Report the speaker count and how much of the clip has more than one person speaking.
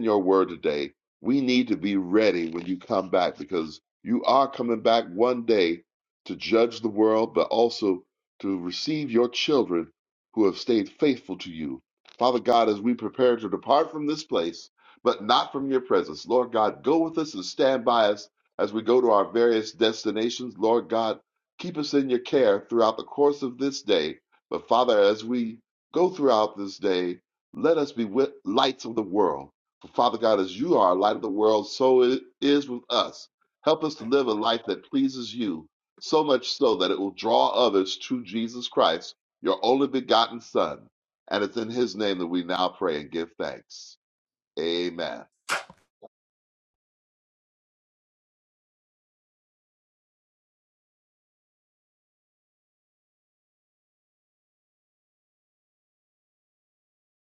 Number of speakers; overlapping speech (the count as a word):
one, no overlap